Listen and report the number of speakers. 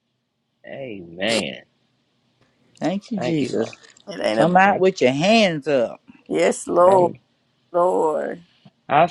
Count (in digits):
3